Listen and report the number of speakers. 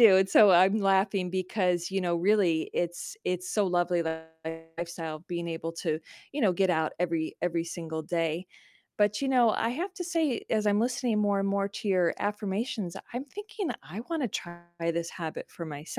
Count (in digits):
1